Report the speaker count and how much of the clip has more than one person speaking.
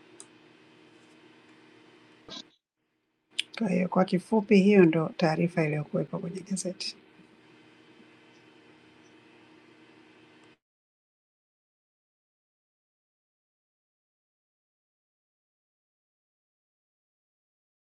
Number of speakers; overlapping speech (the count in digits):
1, no overlap